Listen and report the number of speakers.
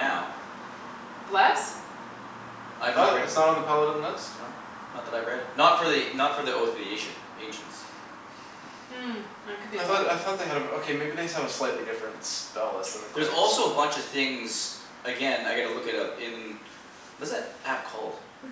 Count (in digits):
3